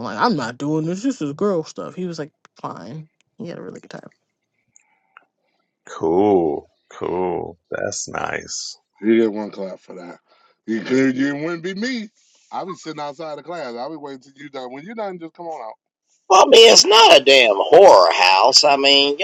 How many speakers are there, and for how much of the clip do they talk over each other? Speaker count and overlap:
4, no overlap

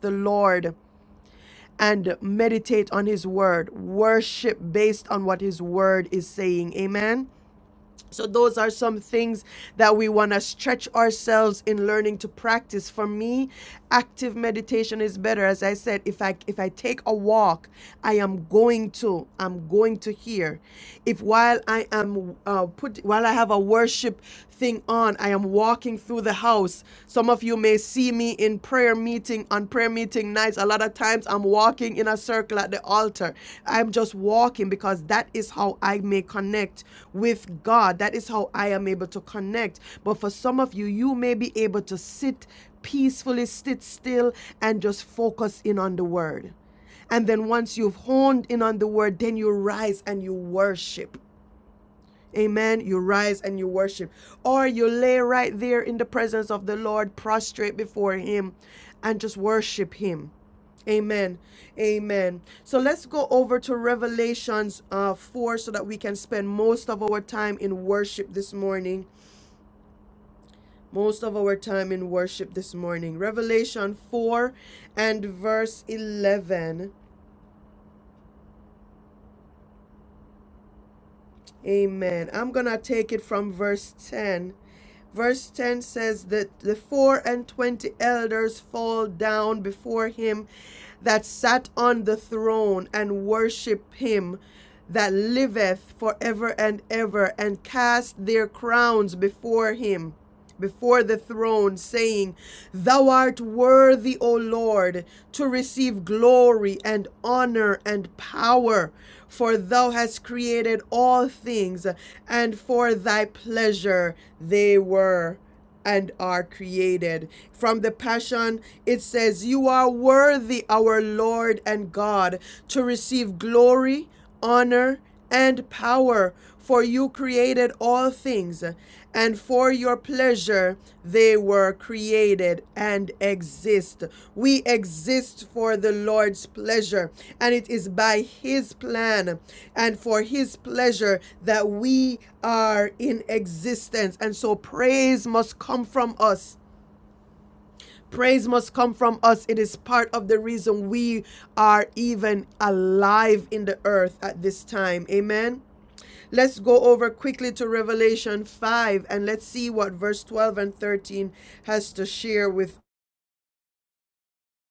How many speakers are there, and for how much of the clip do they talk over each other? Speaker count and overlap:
1, no overlap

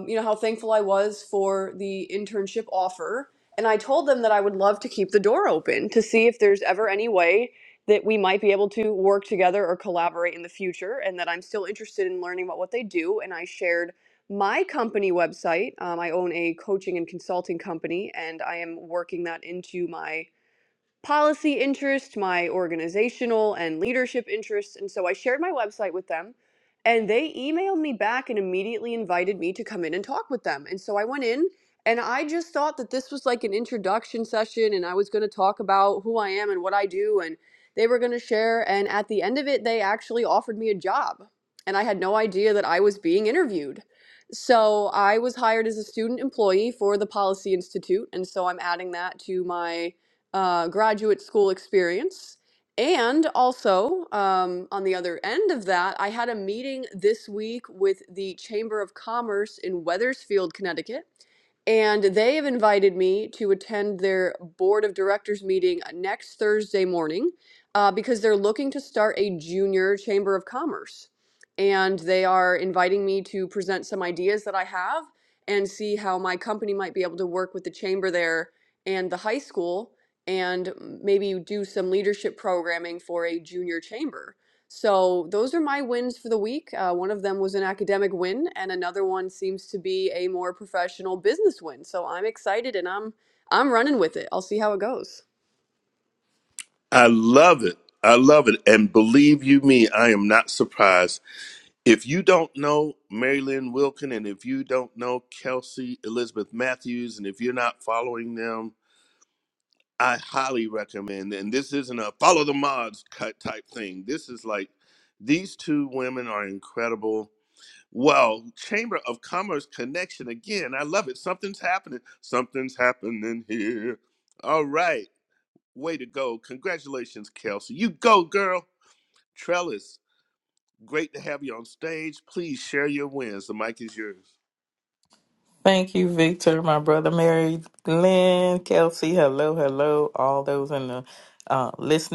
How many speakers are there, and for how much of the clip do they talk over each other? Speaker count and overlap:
3, no overlap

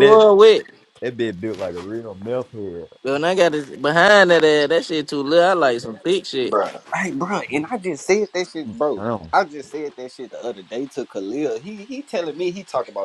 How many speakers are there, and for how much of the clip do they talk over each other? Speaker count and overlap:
3, about 7%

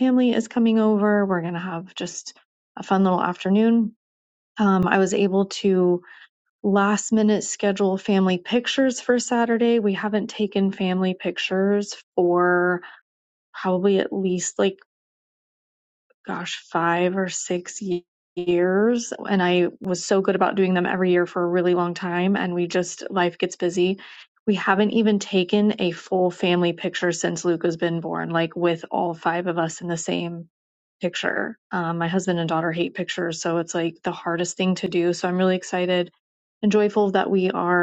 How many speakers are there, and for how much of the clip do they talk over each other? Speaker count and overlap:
1, no overlap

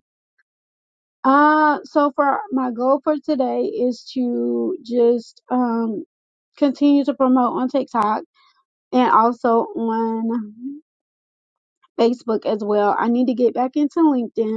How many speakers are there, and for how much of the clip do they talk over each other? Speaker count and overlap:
1, no overlap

